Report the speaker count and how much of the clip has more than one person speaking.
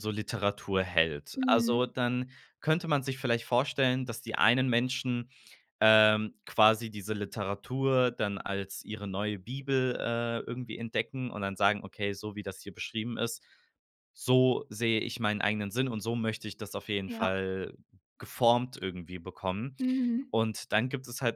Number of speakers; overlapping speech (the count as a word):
two, about 3%